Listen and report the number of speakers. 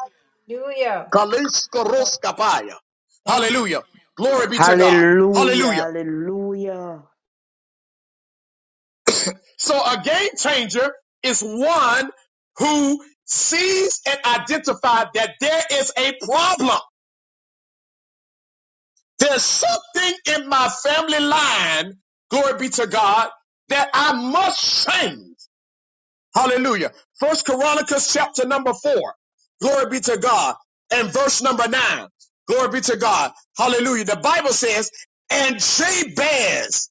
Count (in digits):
3